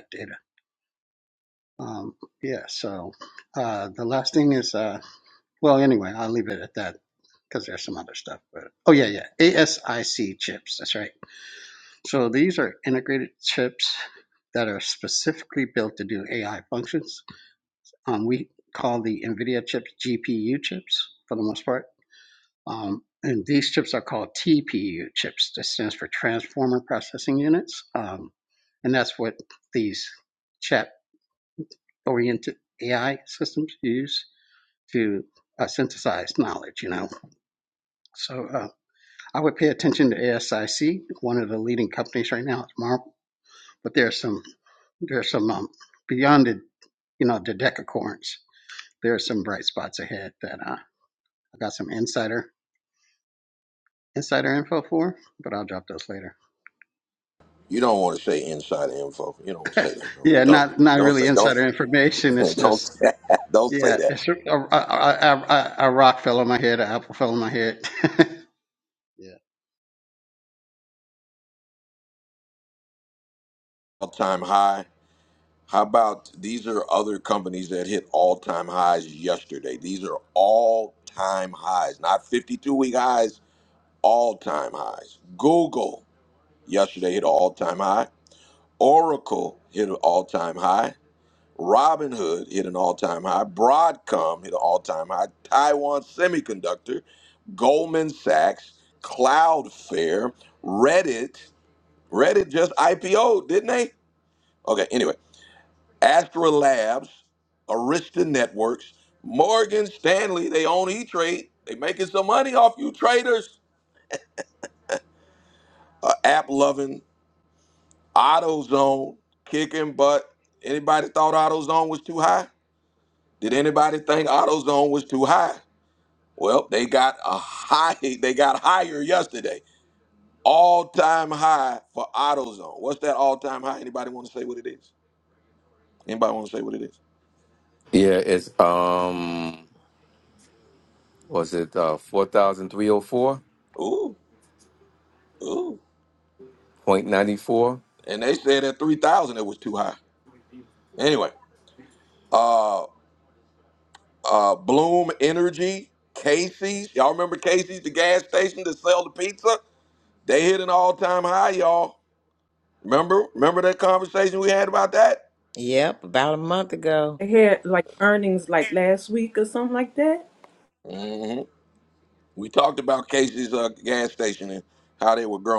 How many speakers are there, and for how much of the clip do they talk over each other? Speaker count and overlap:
five, about 1%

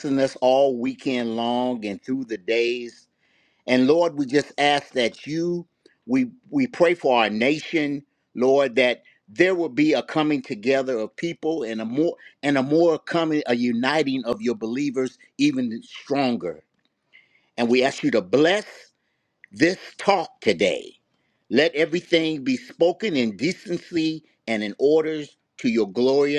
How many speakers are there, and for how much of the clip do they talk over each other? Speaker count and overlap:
one, no overlap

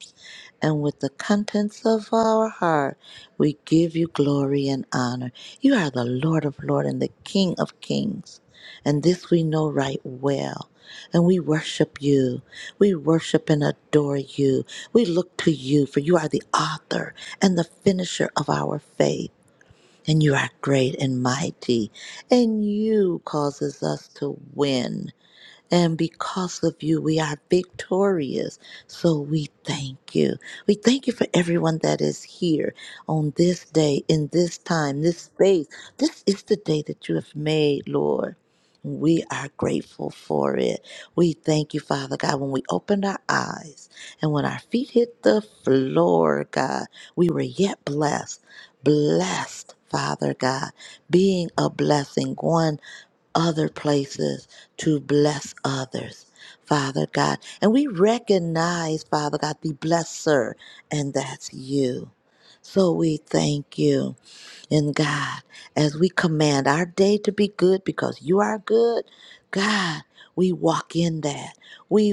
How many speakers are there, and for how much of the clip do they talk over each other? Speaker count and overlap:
one, no overlap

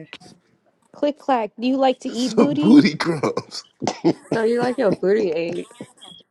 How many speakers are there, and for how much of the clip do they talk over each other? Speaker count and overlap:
three, about 8%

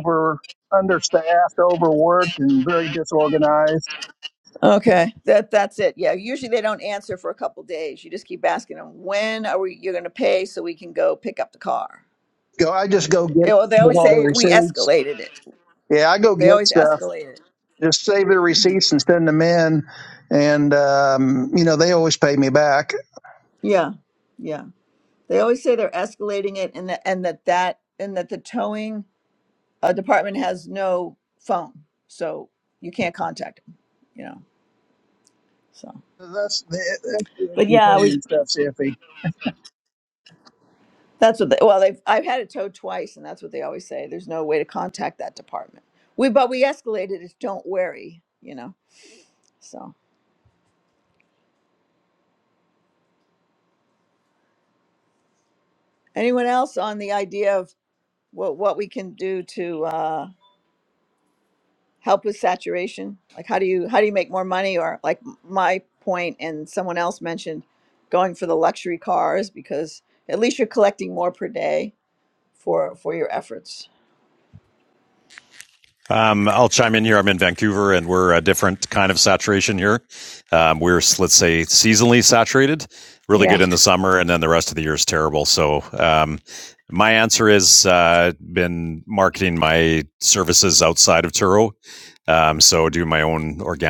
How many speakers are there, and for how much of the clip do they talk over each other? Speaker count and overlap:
three, about 3%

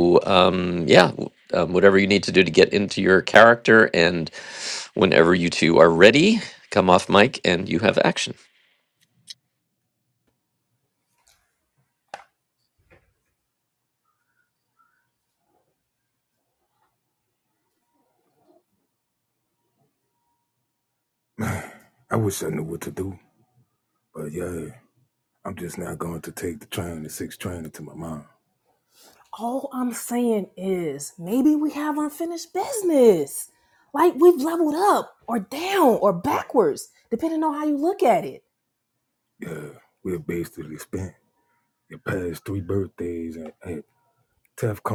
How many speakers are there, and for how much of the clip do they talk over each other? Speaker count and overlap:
three, no overlap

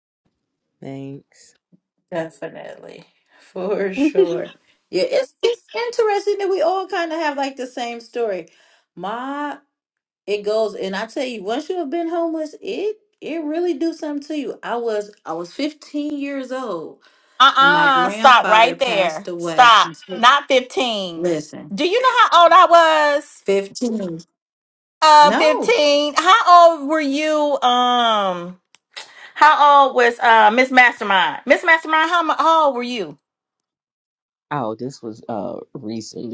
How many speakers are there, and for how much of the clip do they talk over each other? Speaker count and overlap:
three, about 8%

